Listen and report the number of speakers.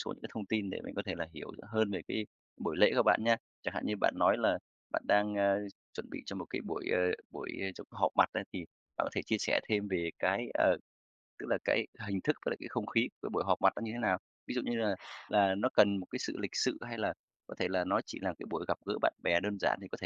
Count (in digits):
1